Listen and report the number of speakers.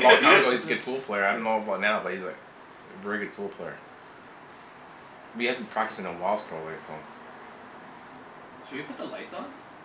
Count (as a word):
two